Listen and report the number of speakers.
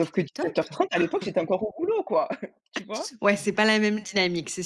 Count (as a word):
two